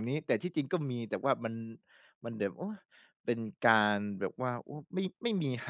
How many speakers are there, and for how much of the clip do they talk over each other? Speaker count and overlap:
one, no overlap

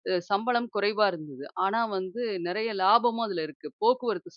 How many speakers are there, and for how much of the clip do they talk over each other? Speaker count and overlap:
one, no overlap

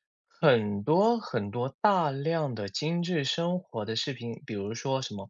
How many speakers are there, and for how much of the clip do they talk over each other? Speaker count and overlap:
one, no overlap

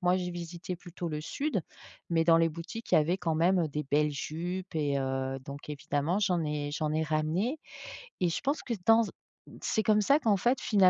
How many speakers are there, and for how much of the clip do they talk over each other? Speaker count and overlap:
one, no overlap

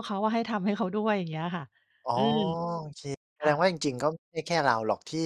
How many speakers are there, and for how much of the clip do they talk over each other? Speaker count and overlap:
two, about 4%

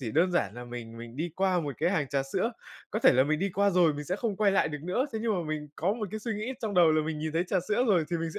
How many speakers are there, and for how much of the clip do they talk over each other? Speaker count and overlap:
one, no overlap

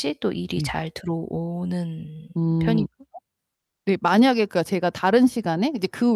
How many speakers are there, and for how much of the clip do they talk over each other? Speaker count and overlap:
two, about 6%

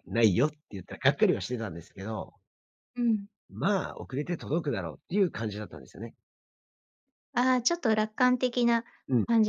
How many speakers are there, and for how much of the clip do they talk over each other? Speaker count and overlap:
two, no overlap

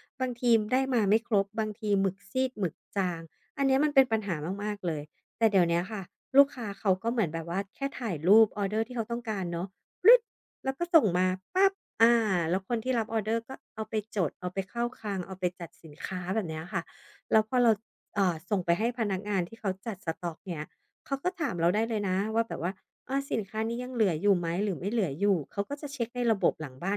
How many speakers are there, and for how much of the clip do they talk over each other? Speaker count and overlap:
one, no overlap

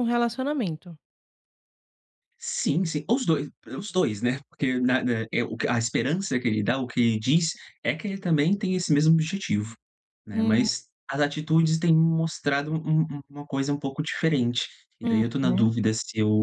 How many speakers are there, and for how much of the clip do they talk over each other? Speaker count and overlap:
two, about 6%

